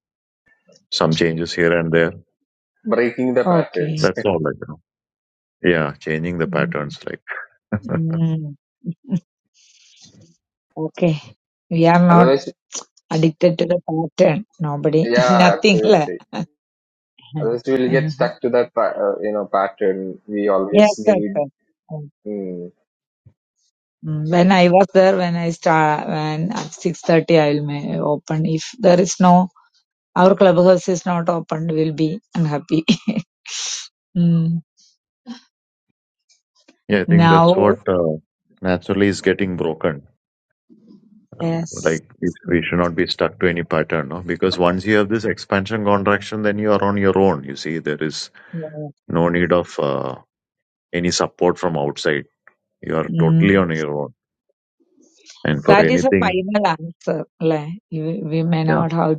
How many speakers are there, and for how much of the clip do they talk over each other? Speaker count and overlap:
three, about 8%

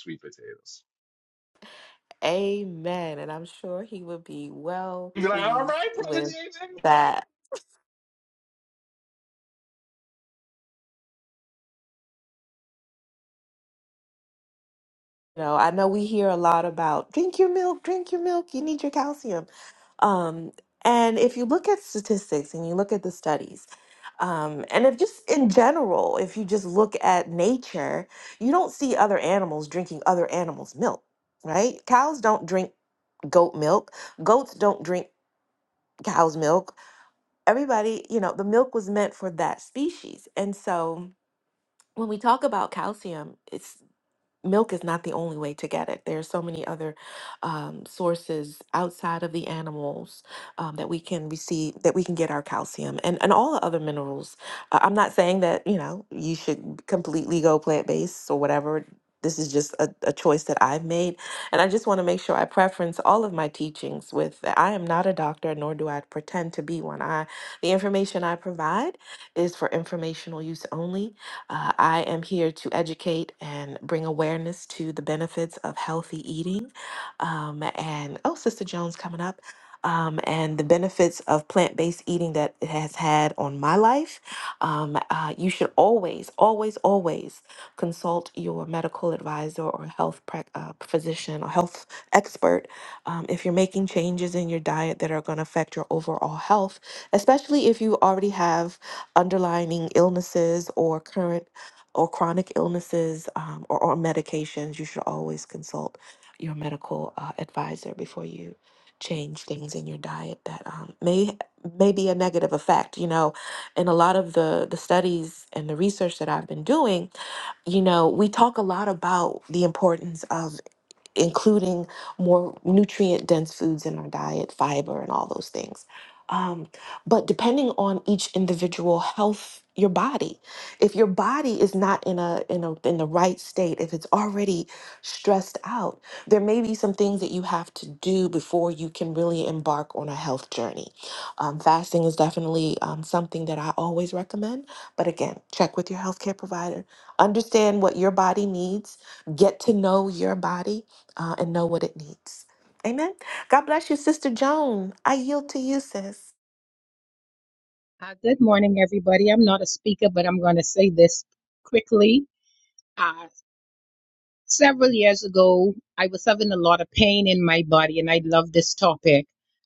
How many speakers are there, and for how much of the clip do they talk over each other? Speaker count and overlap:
three, about 1%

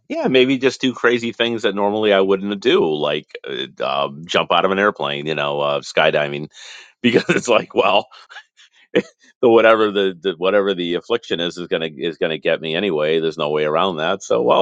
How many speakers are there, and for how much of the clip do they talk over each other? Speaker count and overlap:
one, no overlap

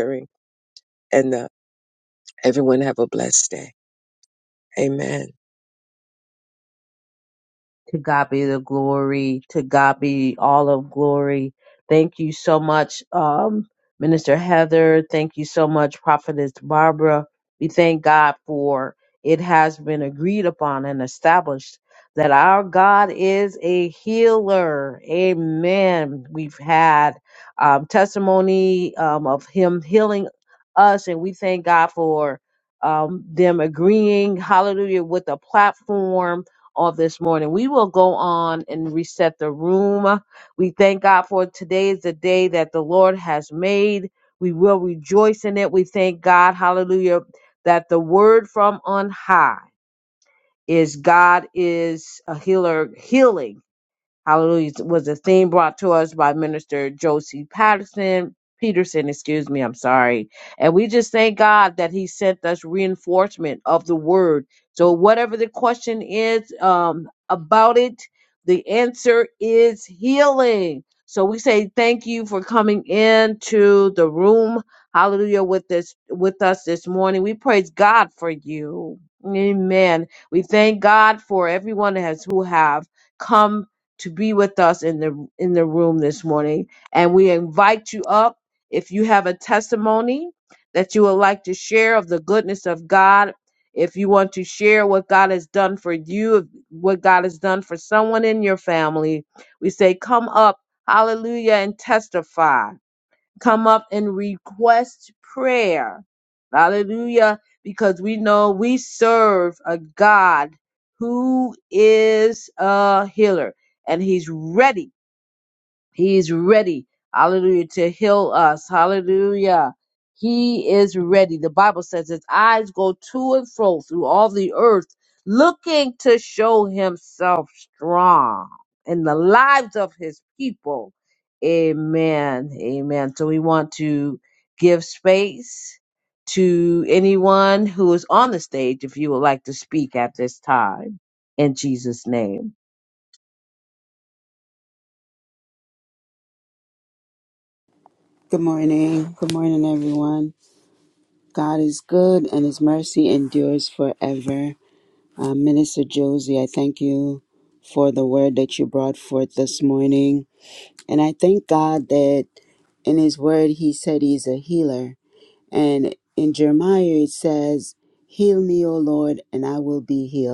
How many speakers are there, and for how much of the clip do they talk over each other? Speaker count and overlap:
three, no overlap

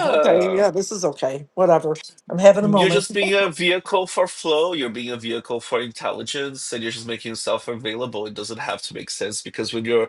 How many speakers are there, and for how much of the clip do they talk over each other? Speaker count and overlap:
two, about 9%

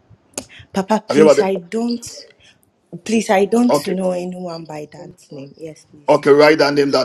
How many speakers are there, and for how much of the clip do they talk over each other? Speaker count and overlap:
two, about 12%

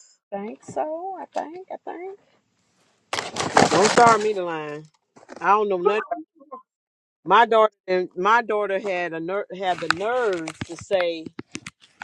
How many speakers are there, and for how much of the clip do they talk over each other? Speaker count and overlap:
one, no overlap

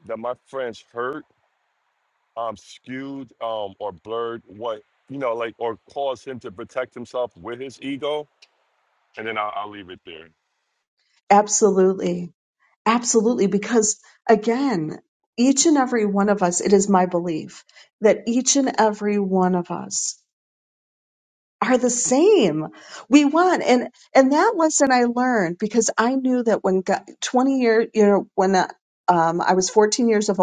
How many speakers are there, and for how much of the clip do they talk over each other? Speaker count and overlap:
two, no overlap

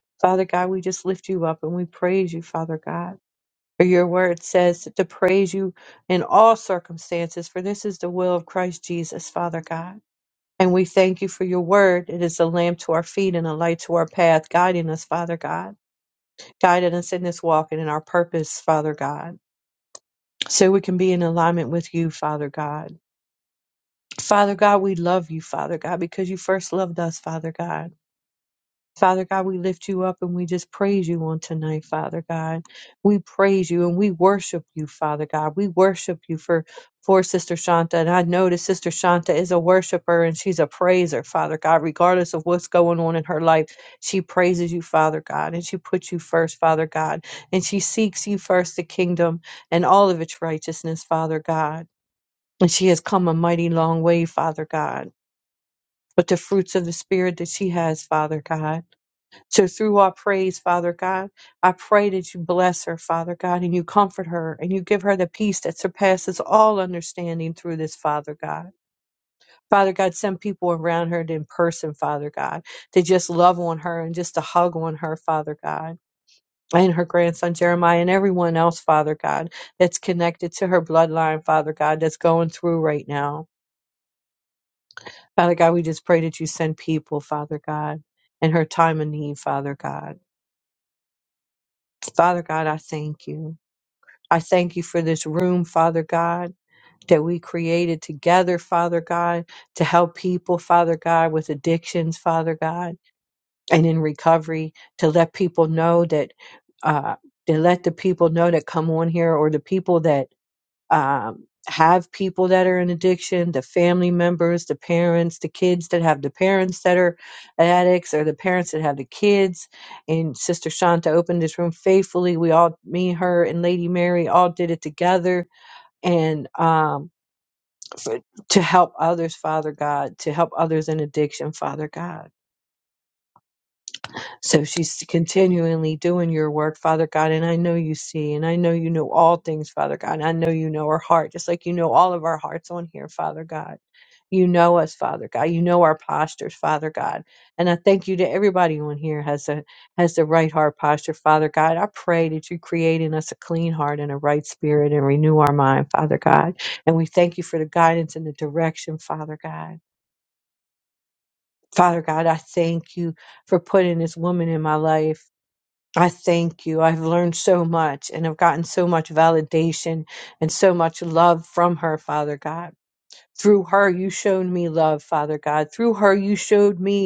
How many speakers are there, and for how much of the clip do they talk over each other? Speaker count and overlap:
one, no overlap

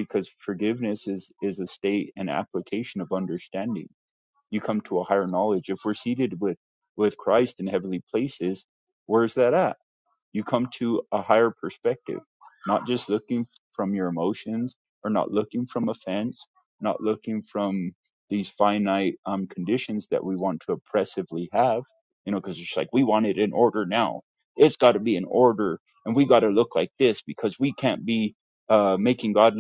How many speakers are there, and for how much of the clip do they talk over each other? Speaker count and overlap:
one, no overlap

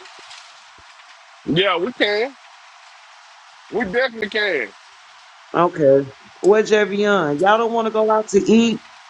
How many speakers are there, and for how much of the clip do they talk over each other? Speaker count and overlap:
two, no overlap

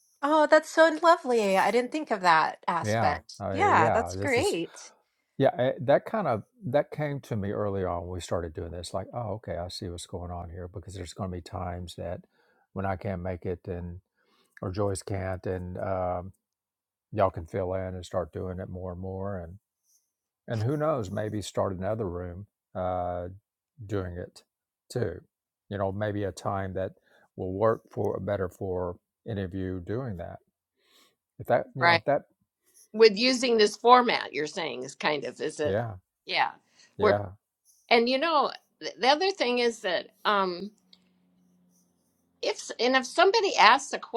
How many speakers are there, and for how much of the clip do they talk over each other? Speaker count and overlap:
three, about 4%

